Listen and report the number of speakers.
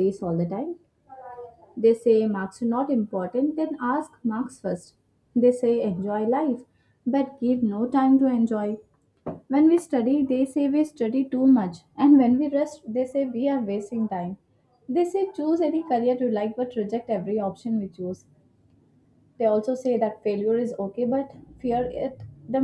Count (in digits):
1